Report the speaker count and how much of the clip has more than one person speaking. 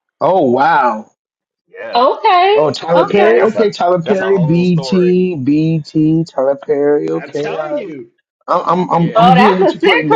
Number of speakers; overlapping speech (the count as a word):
three, about 43%